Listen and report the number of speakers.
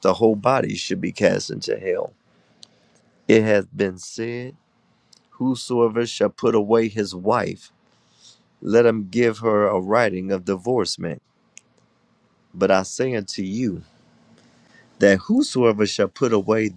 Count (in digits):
1